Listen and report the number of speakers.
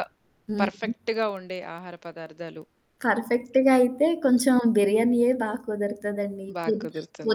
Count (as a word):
two